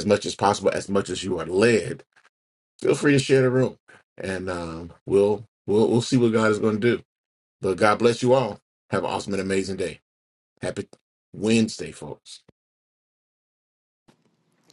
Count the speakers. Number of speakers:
one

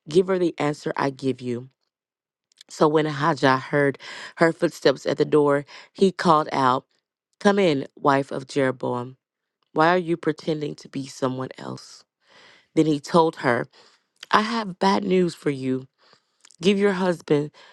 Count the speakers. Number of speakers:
one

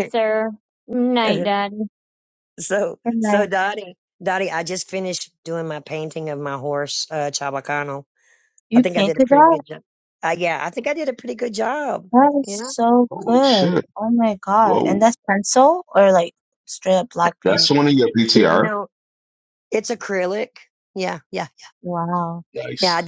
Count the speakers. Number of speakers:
four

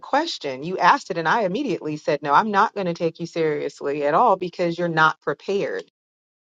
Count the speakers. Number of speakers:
one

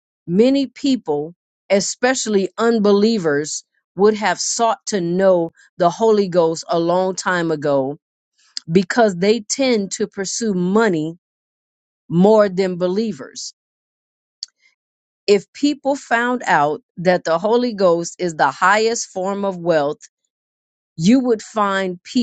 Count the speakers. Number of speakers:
one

